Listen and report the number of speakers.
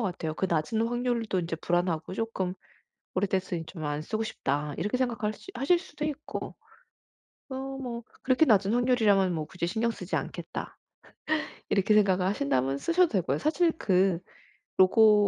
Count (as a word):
one